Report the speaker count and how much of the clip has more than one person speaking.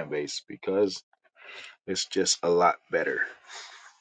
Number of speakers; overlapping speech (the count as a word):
one, no overlap